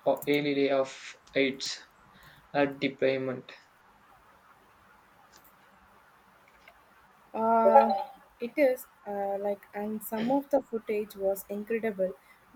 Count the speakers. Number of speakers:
two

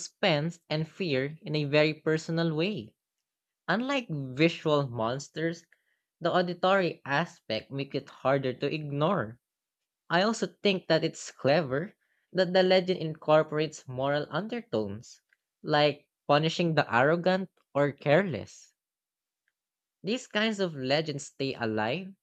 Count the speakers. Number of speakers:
one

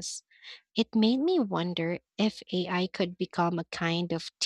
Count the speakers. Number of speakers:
one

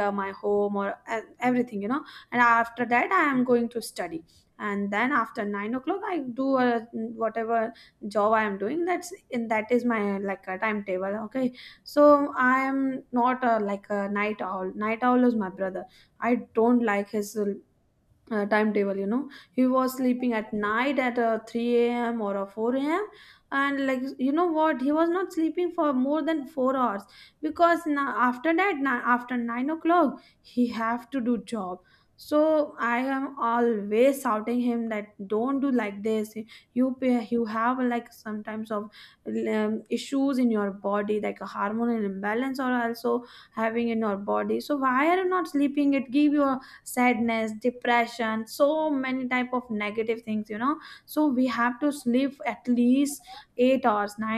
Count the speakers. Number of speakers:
one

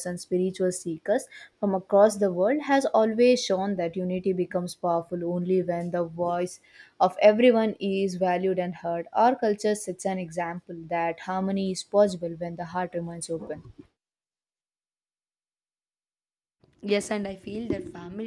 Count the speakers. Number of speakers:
two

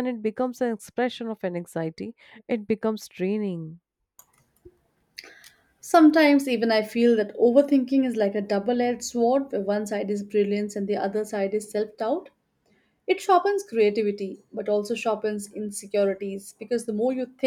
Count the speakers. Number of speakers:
two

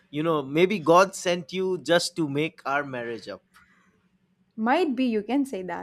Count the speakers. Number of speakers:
two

